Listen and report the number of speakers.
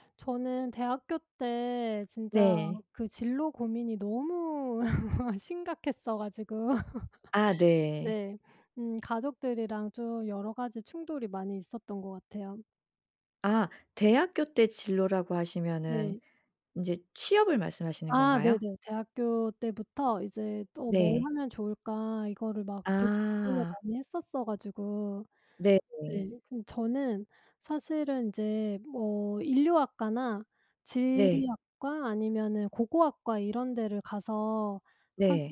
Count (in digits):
2